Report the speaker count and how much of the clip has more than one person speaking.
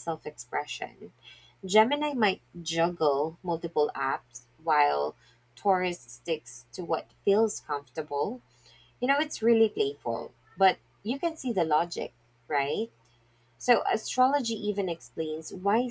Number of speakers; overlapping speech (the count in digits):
1, no overlap